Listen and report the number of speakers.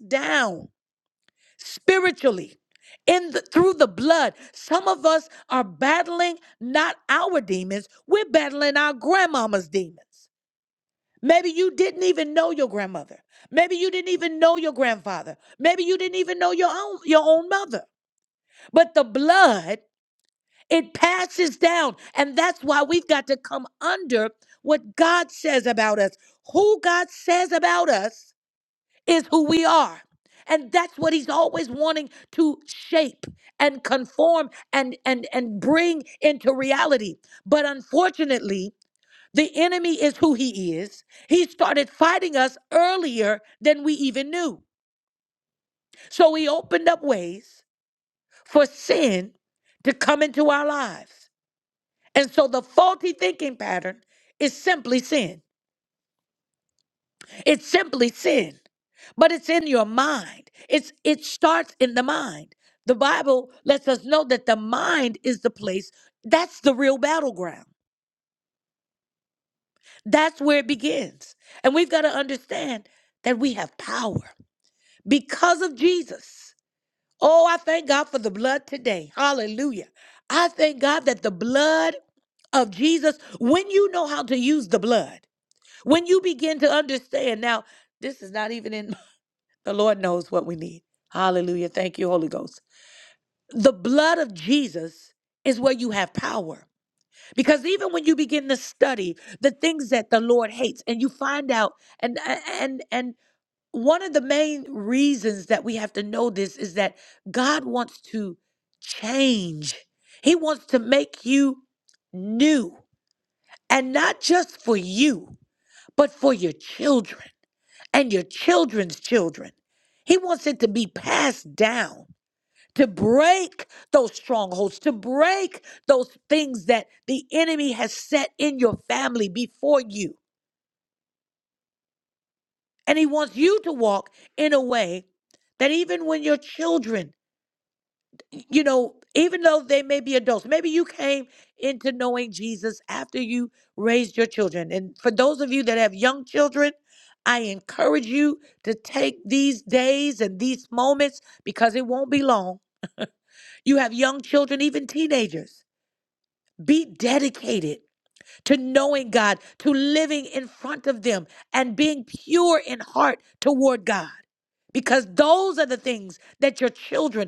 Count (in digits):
1